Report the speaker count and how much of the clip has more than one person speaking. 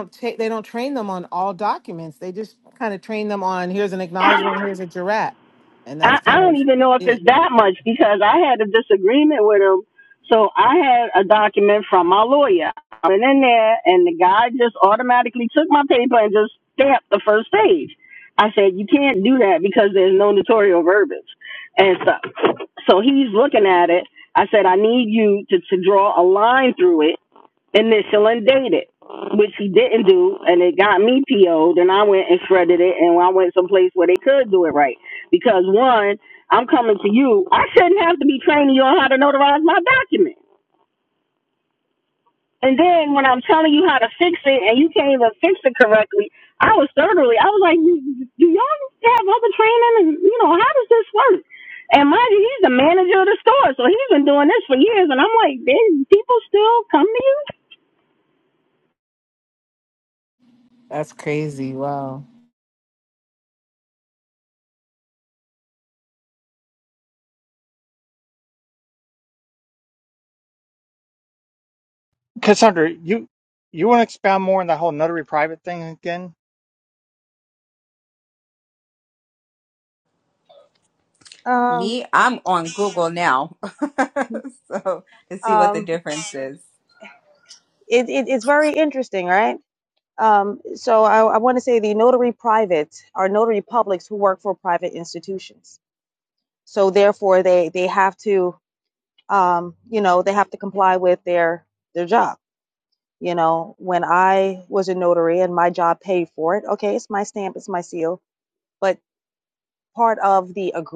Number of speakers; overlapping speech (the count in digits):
5, about 1%